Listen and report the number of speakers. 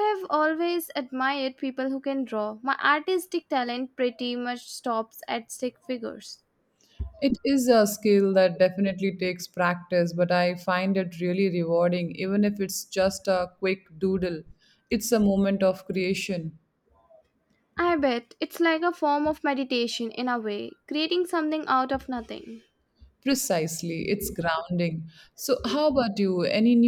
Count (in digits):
2